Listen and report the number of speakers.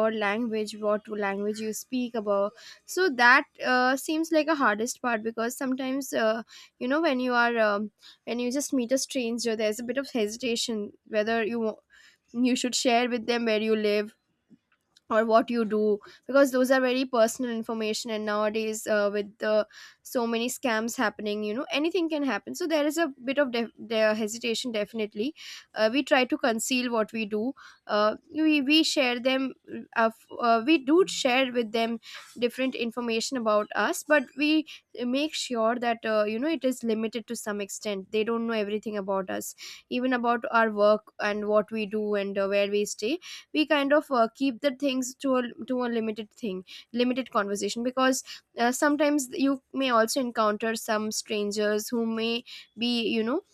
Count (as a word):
one